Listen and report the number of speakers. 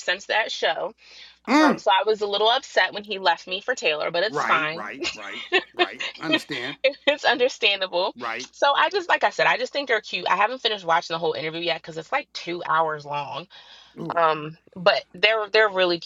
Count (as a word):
two